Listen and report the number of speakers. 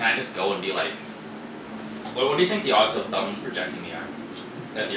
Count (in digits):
1